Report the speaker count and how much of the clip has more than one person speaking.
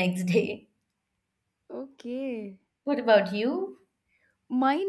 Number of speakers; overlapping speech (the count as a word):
two, no overlap